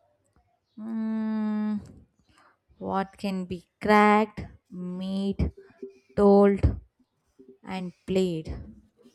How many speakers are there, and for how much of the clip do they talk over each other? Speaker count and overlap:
1, no overlap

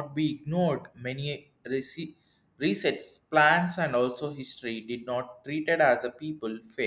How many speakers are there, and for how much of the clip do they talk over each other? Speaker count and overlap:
1, no overlap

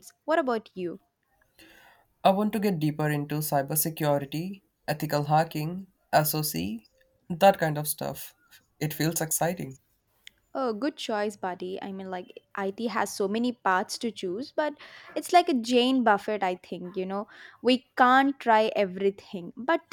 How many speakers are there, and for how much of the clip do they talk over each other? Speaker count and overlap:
2, no overlap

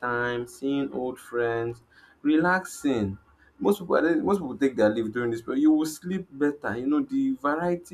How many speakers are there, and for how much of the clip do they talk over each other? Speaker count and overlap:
1, no overlap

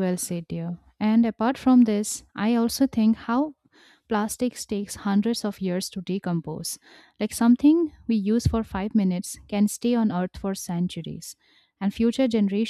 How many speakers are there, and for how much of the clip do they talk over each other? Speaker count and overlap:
1, no overlap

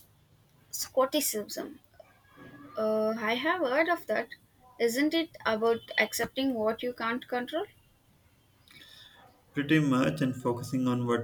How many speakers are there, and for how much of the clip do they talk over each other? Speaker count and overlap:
2, no overlap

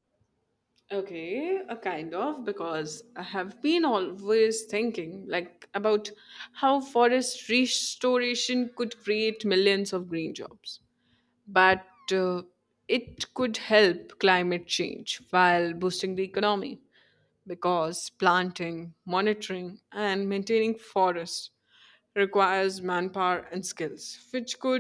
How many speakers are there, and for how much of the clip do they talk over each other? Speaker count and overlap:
1, no overlap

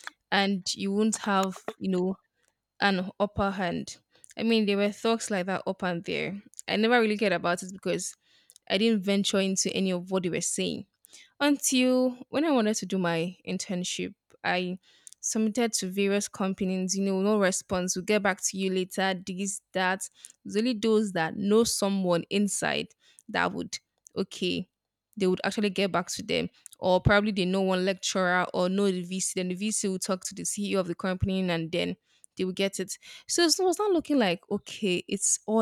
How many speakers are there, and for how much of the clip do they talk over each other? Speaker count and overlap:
1, no overlap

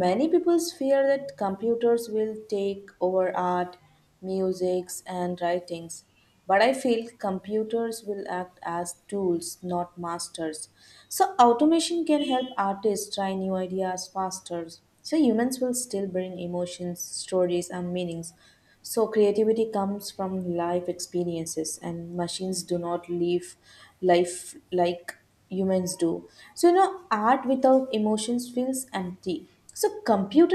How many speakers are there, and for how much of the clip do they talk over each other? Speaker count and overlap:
1, no overlap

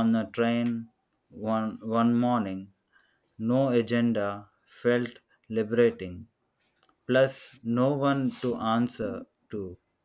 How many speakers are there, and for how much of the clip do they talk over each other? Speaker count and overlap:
1, no overlap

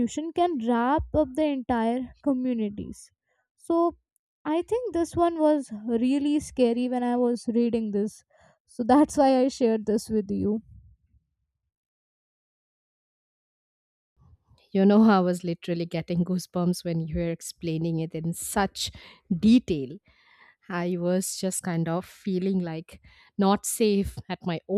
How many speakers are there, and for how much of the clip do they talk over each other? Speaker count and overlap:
2, no overlap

